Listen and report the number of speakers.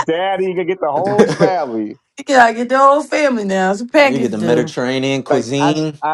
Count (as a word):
three